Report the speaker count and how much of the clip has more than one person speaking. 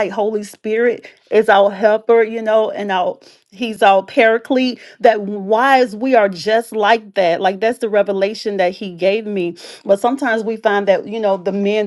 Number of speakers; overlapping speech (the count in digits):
1, no overlap